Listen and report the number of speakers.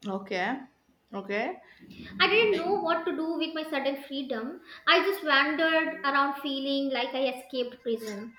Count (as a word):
two